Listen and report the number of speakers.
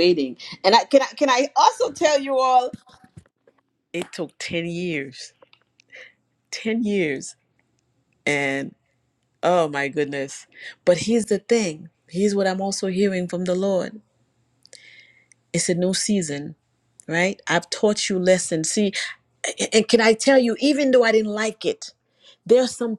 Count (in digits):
1